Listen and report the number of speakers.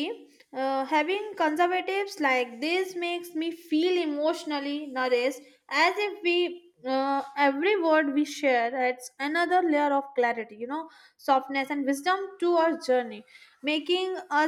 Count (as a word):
one